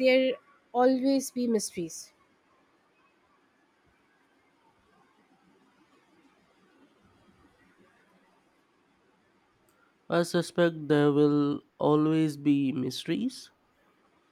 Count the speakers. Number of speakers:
2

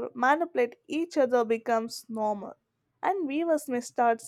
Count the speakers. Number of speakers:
1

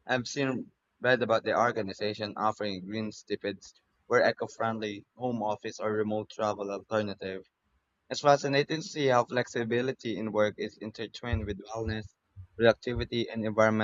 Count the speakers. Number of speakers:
1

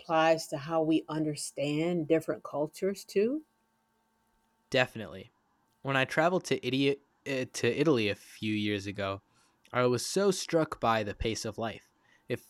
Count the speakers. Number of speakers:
2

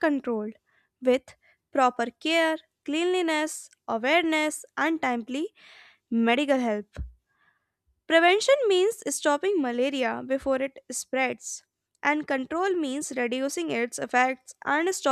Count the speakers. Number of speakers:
1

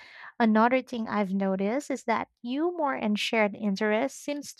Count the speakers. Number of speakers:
1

